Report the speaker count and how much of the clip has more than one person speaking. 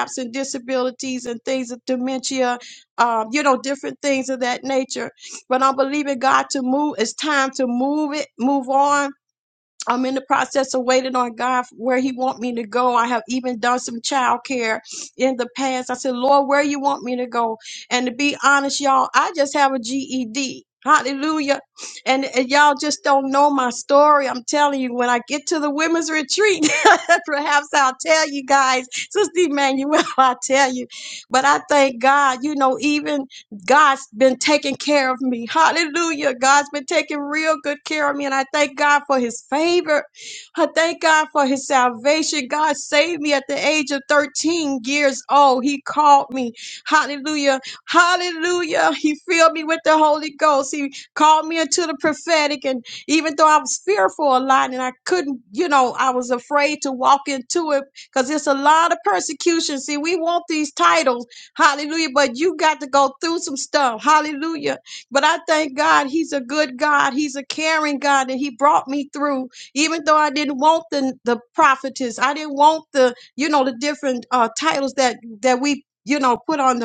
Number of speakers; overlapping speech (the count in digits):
1, no overlap